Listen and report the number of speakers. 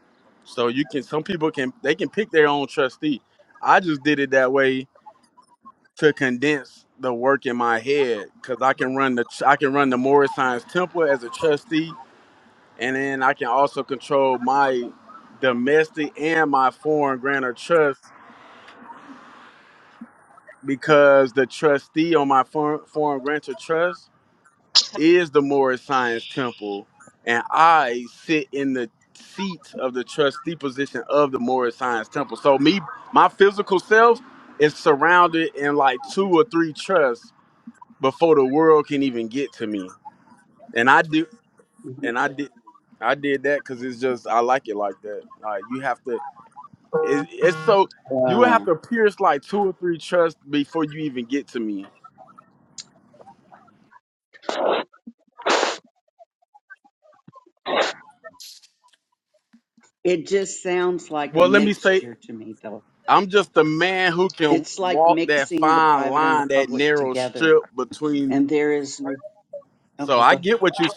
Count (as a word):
two